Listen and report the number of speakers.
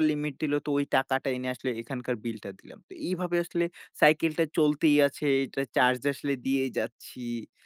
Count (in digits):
1